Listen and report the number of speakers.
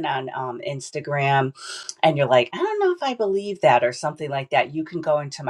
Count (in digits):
1